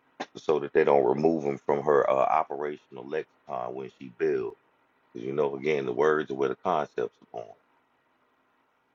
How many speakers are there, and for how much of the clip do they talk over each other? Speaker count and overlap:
one, no overlap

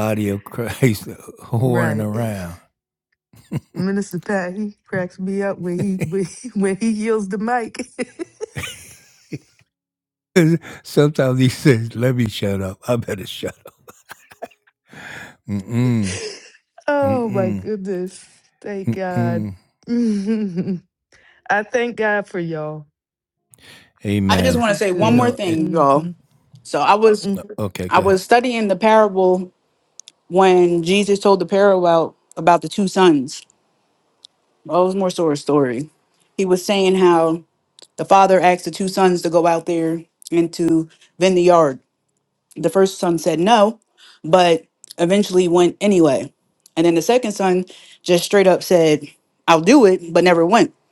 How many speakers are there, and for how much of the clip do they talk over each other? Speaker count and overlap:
three, about 7%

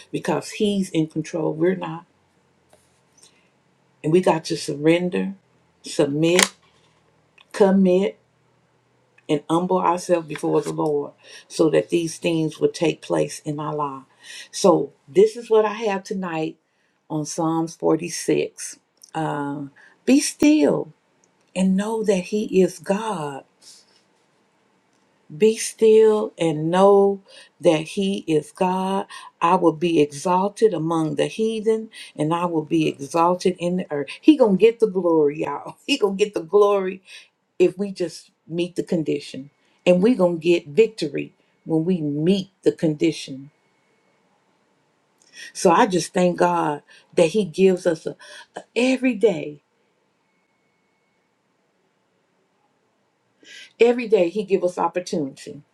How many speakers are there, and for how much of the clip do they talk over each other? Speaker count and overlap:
one, no overlap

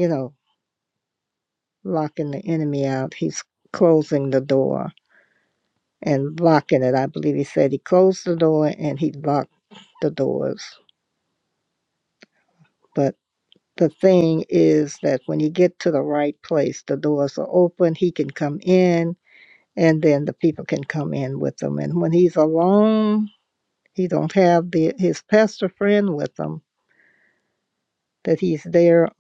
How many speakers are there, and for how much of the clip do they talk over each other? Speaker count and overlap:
one, no overlap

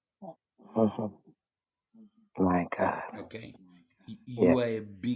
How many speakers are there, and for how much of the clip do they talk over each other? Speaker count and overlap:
two, about 4%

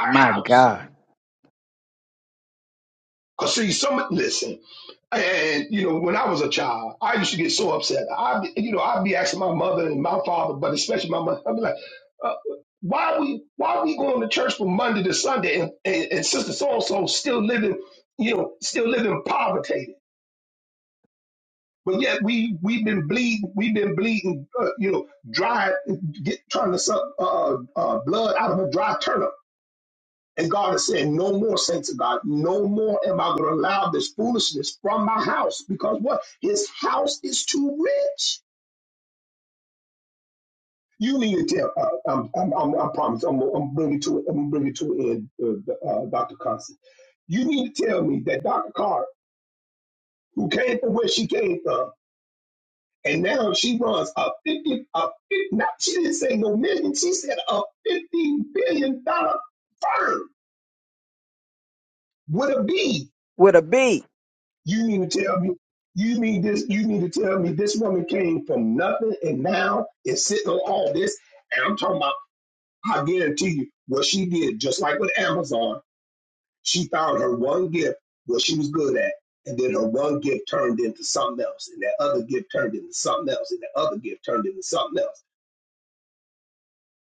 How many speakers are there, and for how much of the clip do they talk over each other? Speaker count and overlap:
two, about 1%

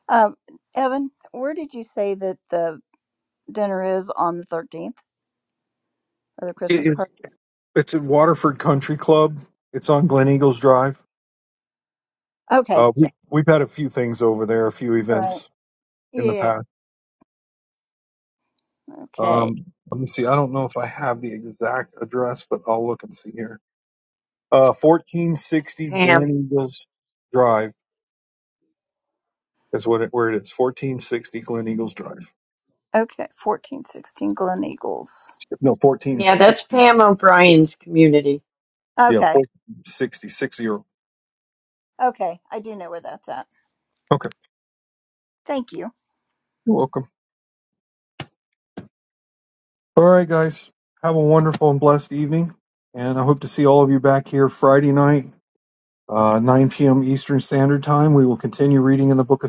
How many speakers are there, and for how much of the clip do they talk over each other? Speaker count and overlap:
three, about 4%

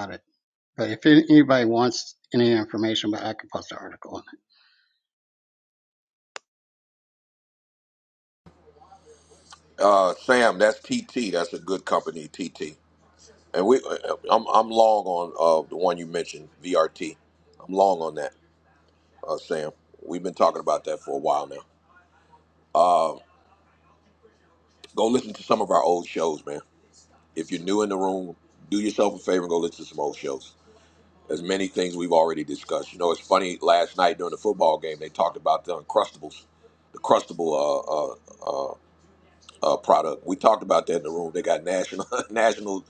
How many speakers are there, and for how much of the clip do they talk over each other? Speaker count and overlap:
two, no overlap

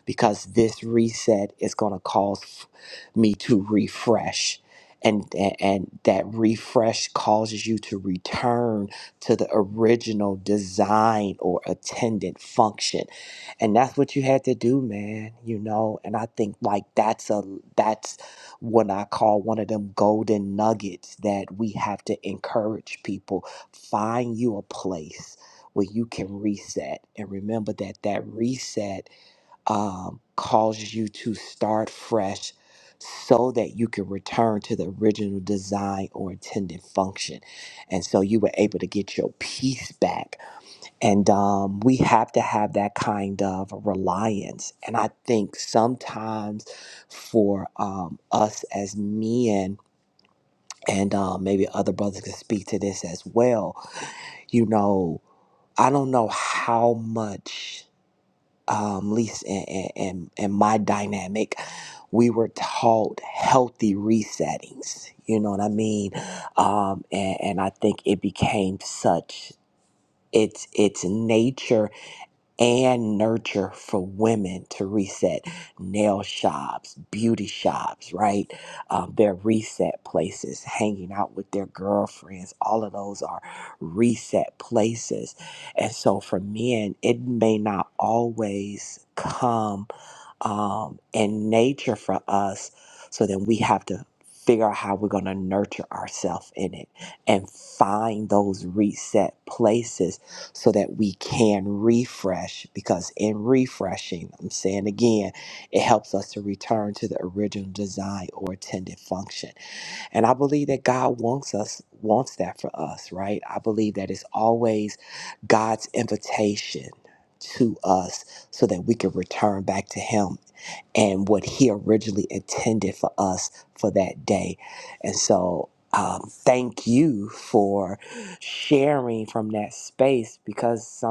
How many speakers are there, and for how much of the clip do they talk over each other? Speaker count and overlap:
one, no overlap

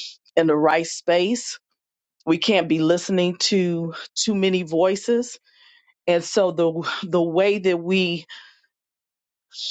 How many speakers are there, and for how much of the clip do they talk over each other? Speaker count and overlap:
one, no overlap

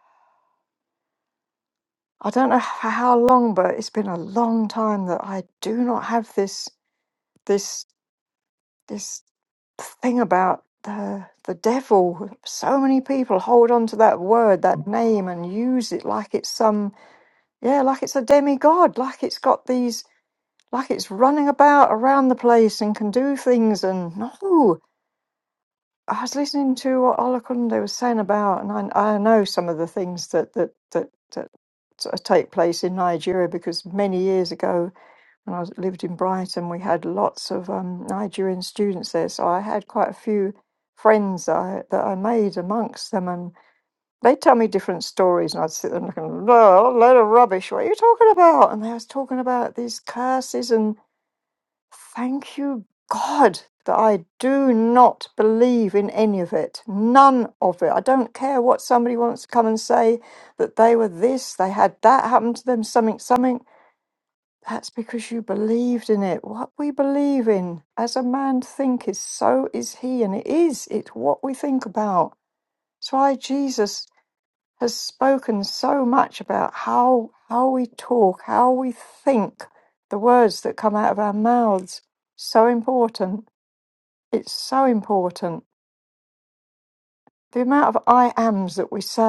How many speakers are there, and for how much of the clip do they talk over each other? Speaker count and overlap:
one, no overlap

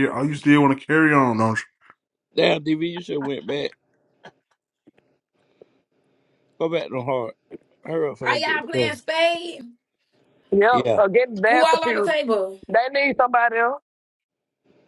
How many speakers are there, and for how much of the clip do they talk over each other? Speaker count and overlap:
four, about 11%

